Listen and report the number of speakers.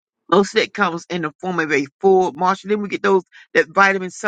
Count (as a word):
one